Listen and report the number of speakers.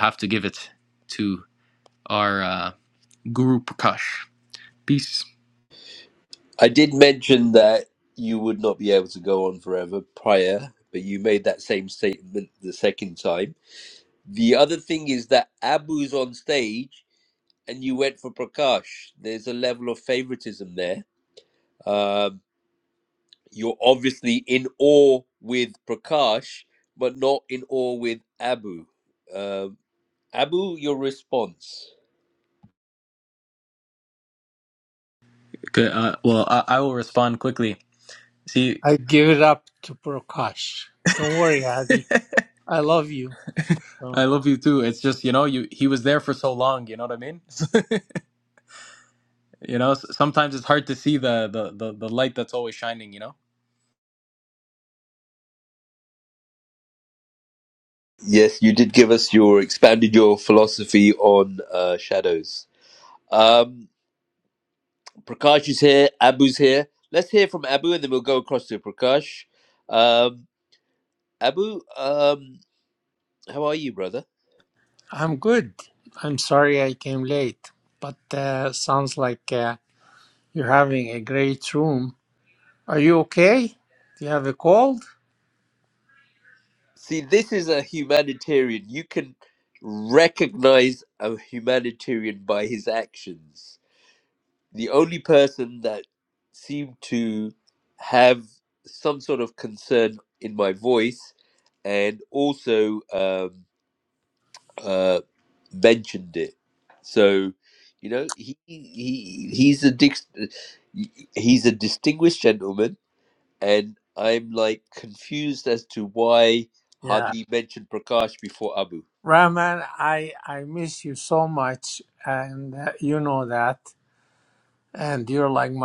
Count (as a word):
three